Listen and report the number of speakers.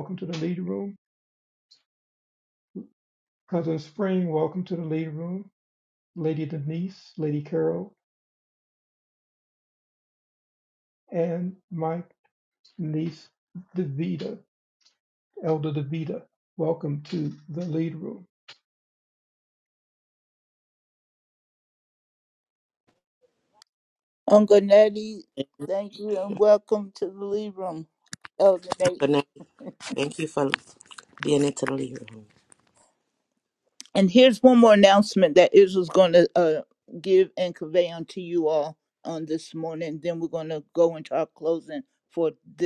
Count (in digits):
3